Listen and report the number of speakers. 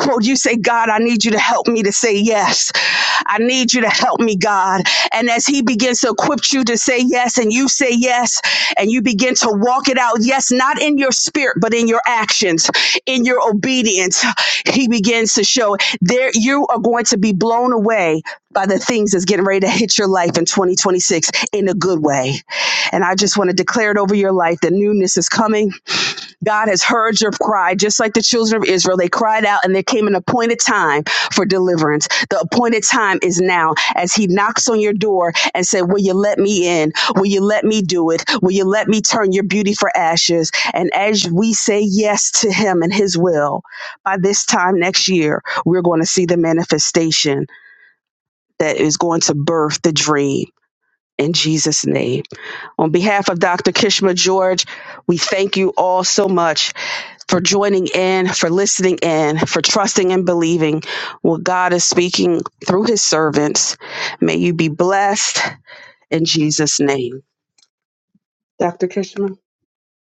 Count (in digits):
1